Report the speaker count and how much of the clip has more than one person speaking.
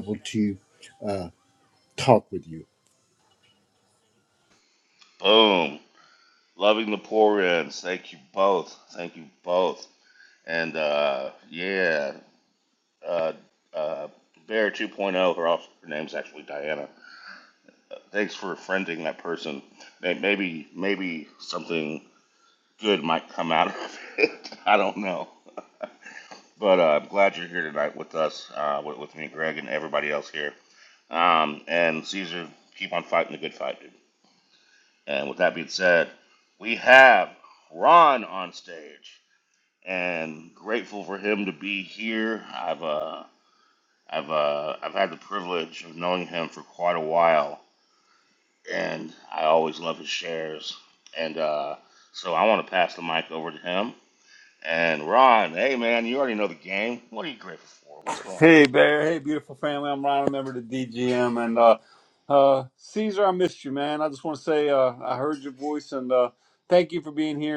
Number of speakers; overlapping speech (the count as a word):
three, under 1%